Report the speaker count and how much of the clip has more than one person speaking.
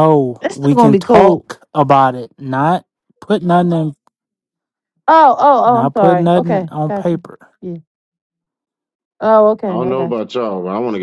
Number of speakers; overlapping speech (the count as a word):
three, about 26%